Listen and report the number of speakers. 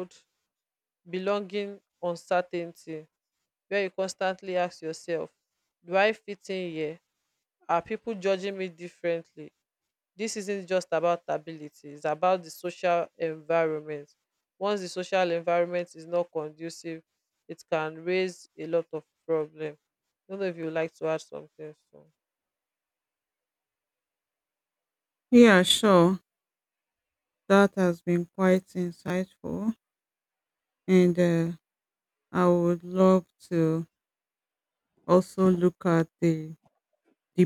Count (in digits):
2